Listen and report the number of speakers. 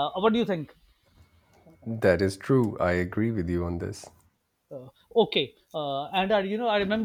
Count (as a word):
two